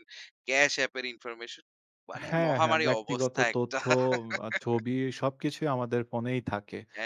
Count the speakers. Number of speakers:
2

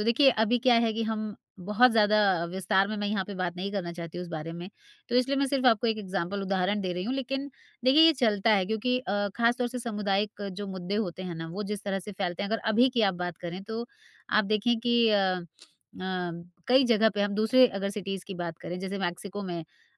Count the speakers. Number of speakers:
1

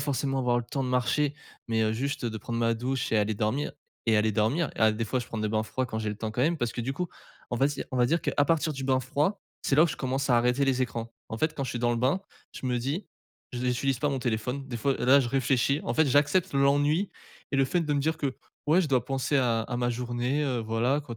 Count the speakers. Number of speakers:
1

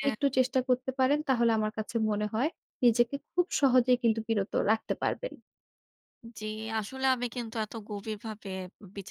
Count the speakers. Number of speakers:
2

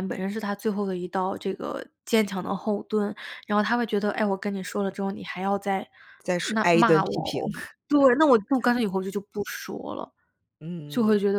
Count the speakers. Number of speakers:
2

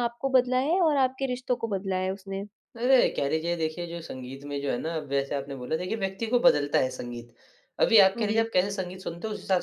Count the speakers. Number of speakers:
2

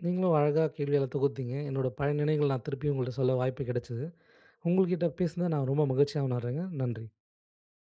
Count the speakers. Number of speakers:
1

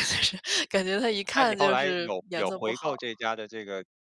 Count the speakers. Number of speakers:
2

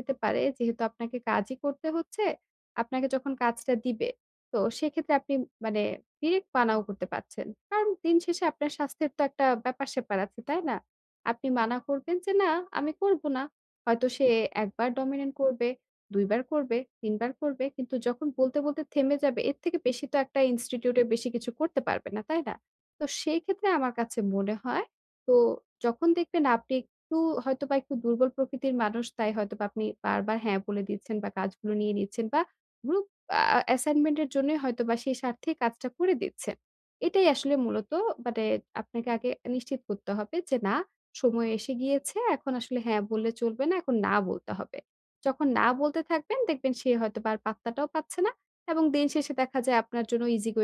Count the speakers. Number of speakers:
1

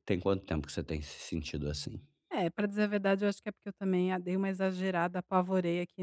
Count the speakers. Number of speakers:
2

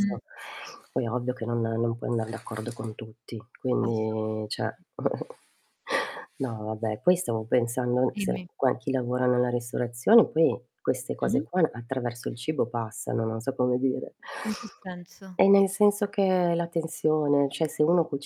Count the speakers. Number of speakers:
2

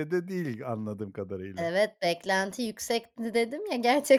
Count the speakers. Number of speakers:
2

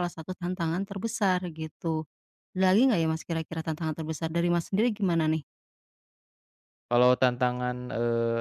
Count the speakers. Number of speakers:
2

